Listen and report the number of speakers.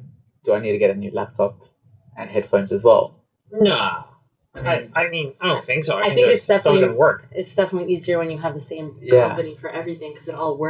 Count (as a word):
three